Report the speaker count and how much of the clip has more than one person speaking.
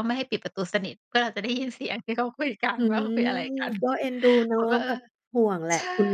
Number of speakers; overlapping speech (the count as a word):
two, about 12%